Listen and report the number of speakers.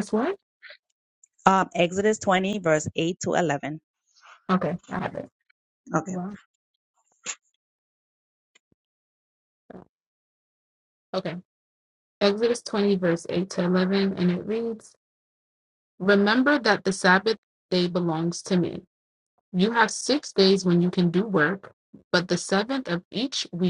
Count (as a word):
two